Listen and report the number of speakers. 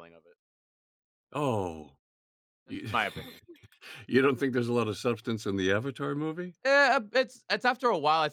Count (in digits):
2